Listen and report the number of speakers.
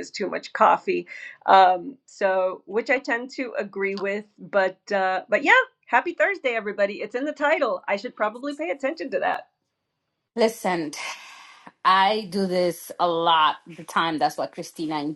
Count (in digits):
2